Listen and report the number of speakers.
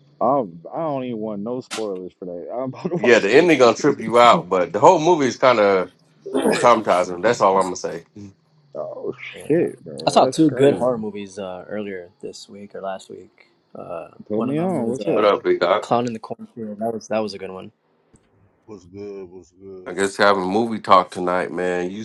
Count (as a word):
four